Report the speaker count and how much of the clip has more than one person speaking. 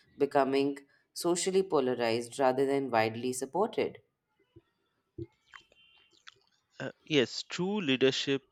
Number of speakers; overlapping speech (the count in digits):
2, no overlap